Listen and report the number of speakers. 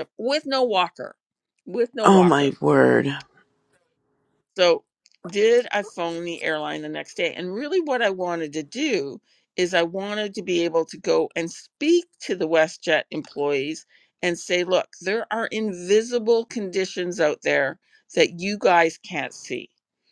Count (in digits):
2